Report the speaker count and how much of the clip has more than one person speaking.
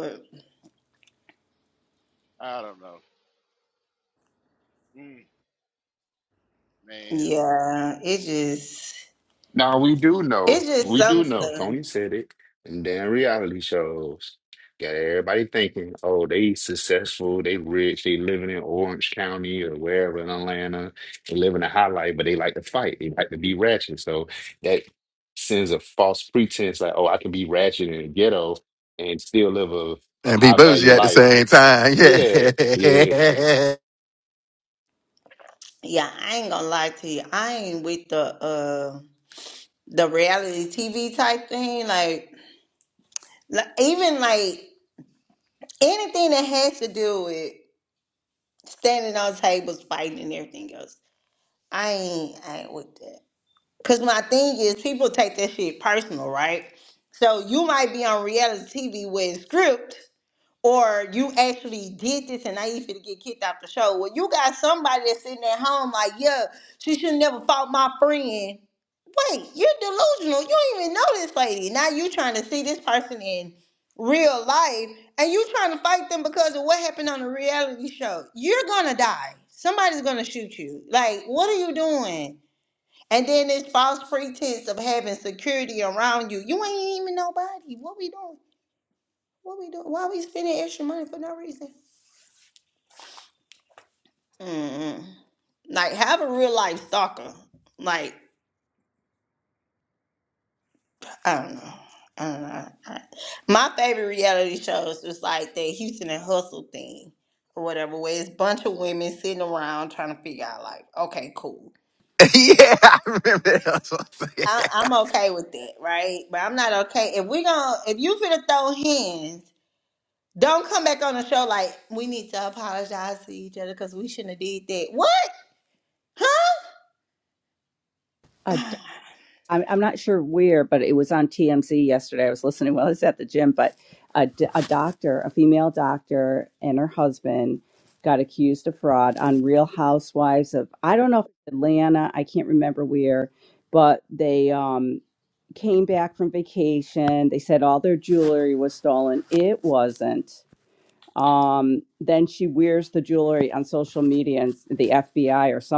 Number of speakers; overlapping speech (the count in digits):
5, about 2%